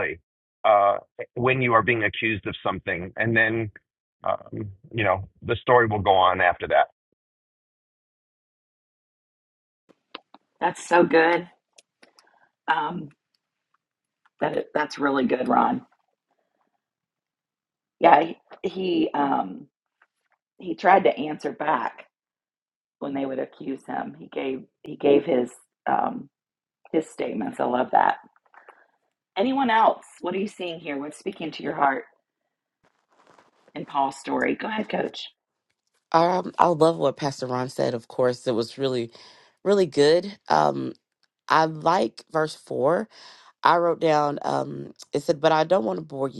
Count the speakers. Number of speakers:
three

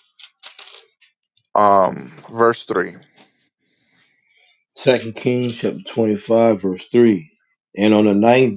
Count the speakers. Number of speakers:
two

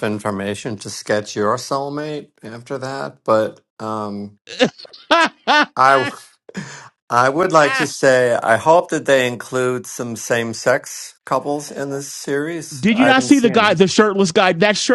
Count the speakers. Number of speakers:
two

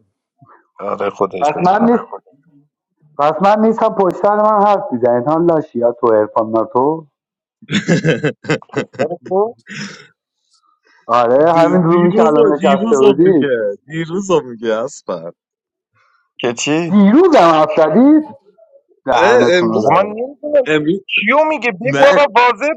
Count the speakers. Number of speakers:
three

